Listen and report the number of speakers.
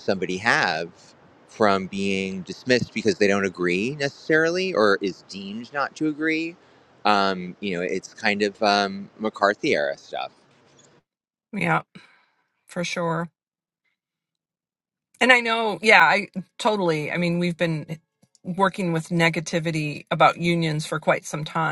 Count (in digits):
2